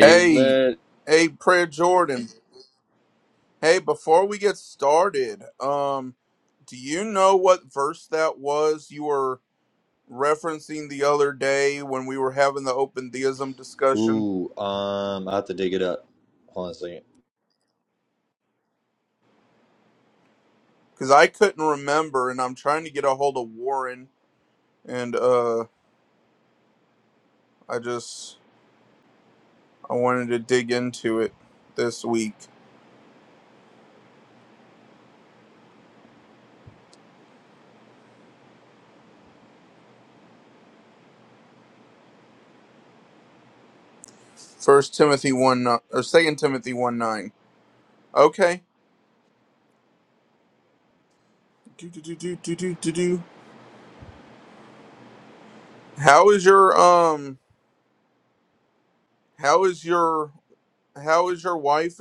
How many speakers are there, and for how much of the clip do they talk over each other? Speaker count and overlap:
2, about 1%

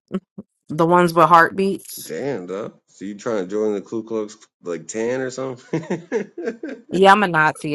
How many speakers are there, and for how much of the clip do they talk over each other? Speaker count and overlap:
2, no overlap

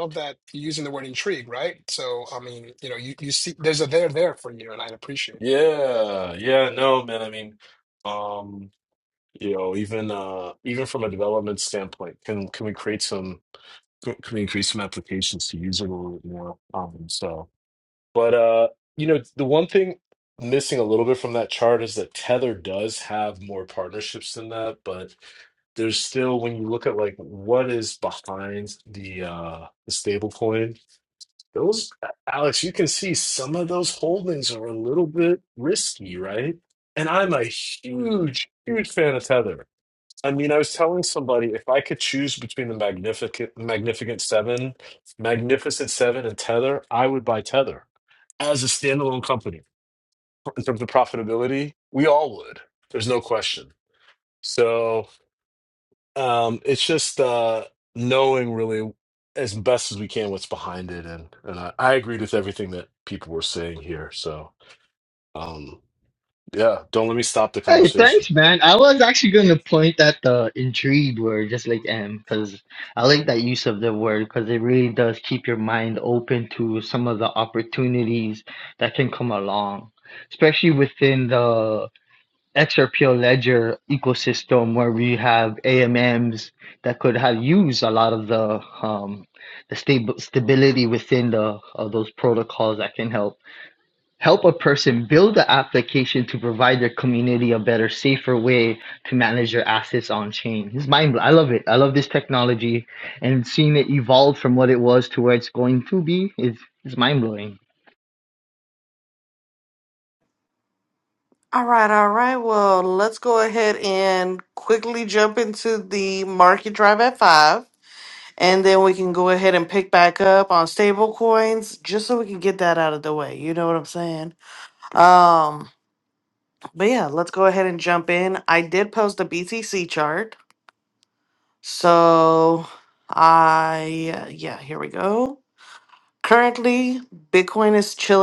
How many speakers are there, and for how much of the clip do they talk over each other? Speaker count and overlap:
4, about 1%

